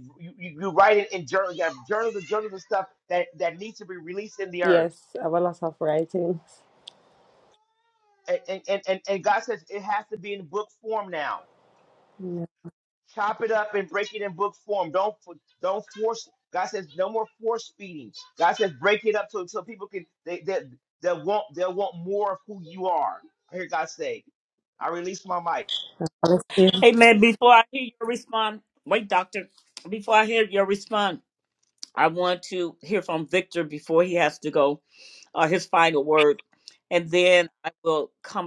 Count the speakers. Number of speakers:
3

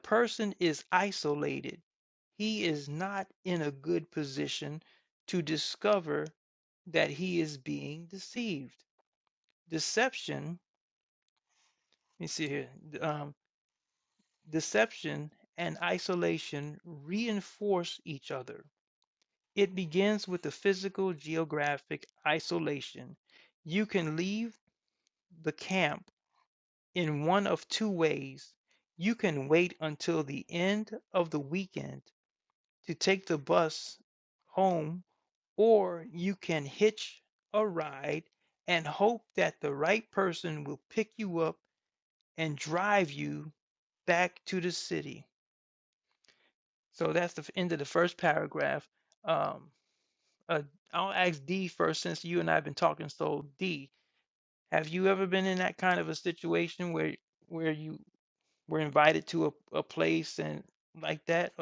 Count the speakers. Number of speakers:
1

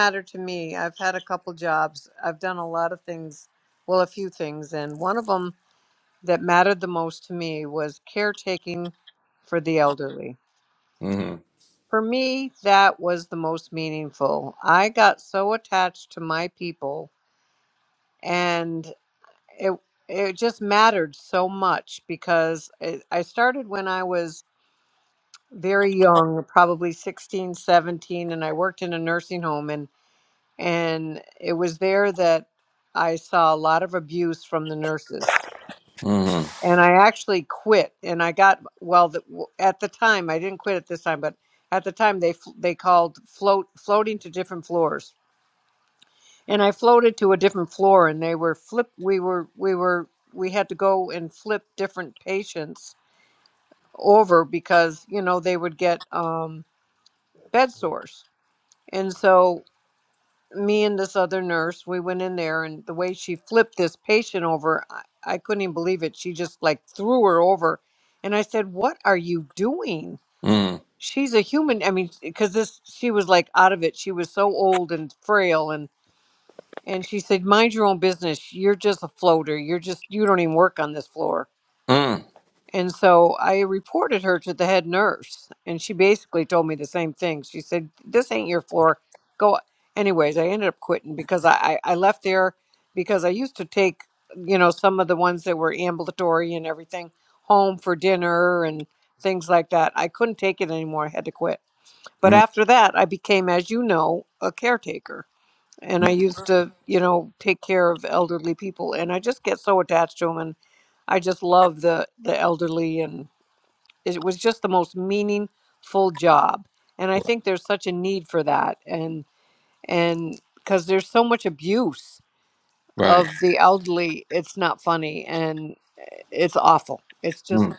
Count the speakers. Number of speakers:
2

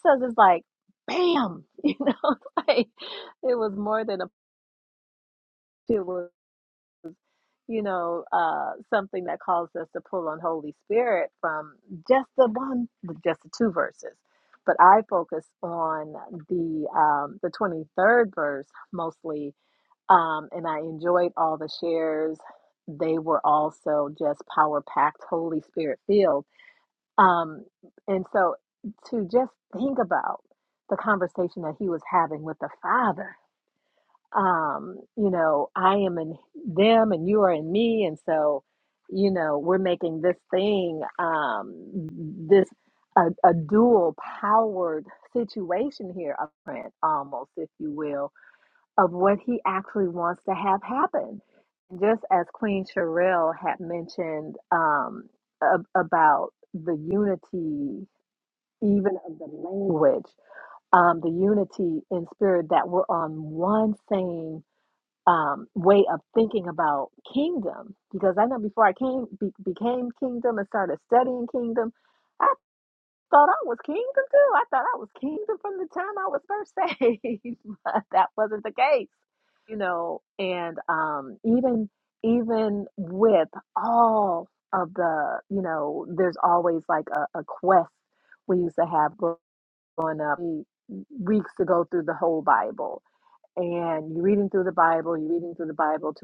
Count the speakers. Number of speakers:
1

